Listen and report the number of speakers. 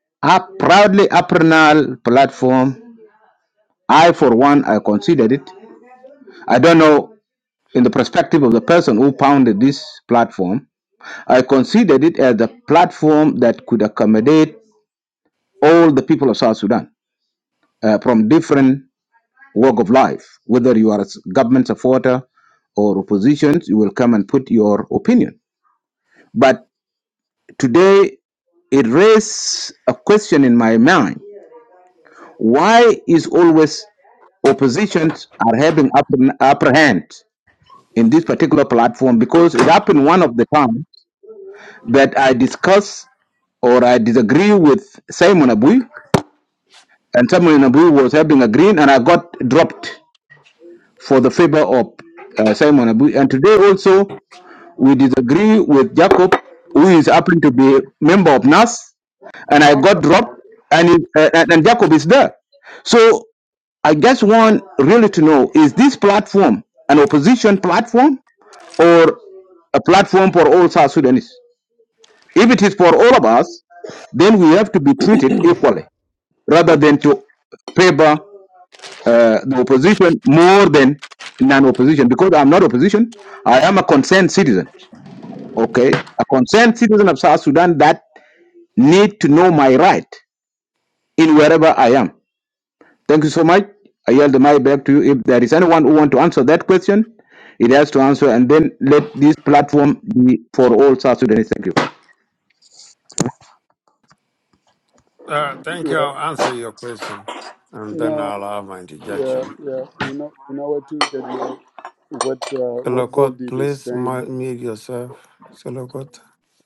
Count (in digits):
3